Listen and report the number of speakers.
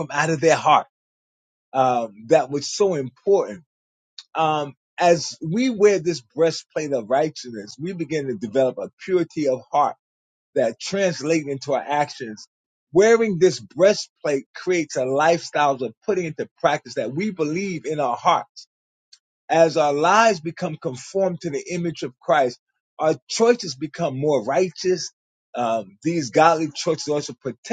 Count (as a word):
one